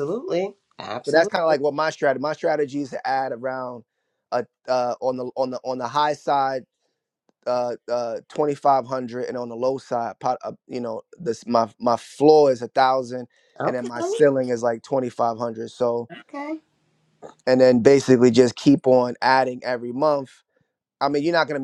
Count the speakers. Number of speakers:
2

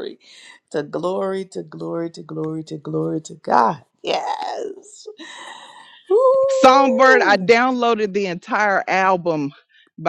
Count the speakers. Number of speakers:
2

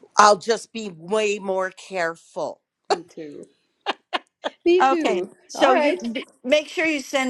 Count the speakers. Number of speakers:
3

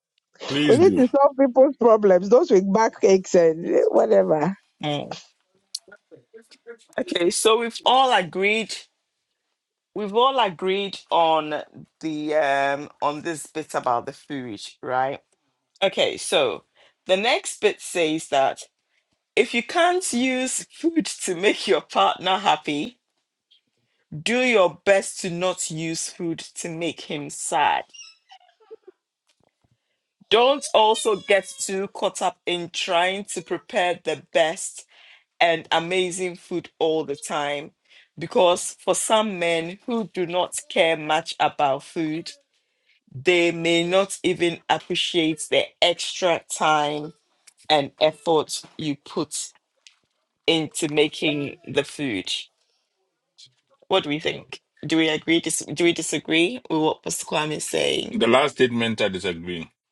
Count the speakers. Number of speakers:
3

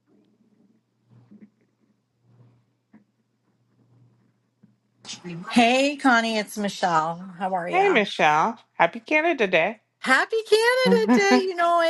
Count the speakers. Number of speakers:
2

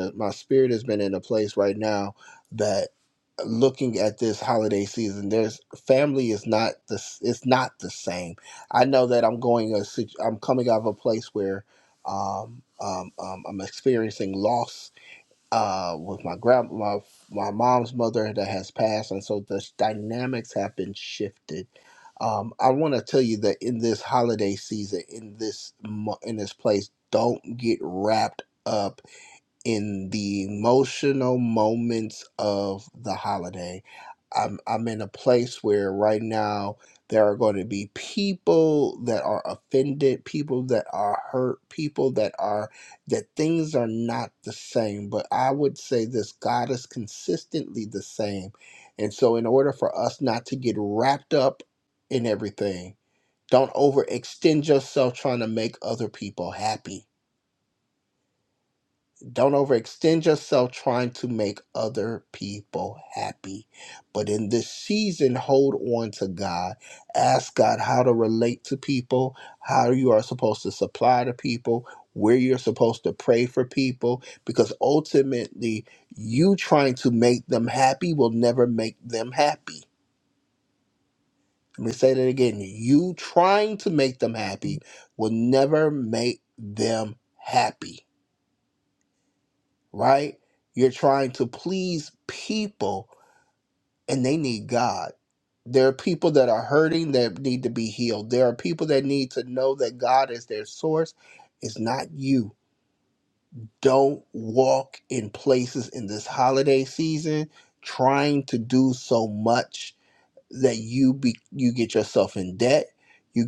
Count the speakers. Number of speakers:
1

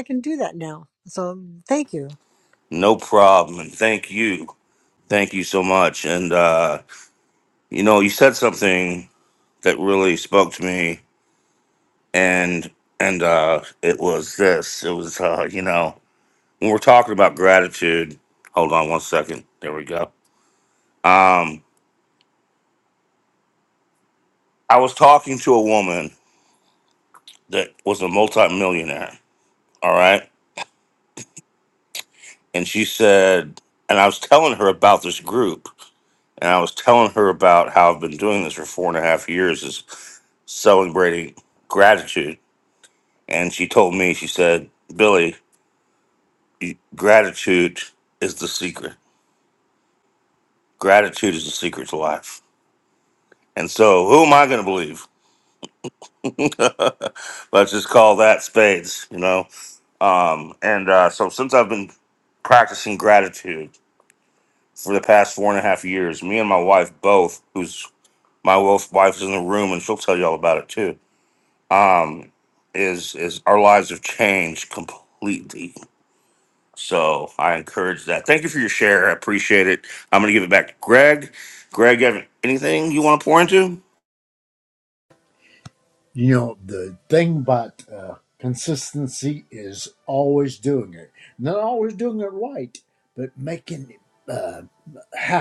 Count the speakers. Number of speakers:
3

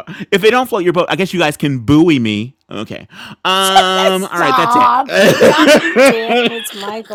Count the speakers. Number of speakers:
2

